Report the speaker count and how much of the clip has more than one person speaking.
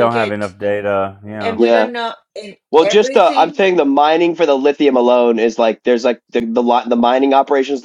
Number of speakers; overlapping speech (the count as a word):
three, about 24%